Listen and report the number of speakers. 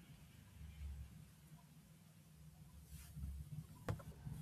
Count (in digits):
0